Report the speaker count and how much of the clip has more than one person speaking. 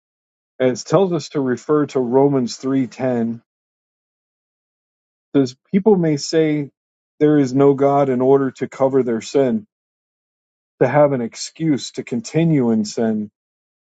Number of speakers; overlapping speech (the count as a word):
one, no overlap